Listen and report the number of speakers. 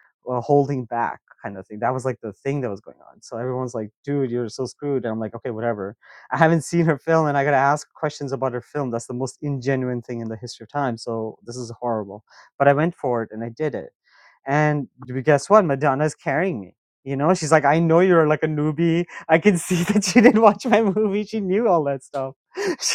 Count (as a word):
one